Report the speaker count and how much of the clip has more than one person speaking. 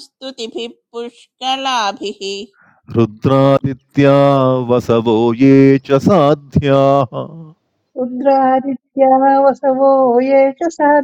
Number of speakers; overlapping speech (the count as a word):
three, no overlap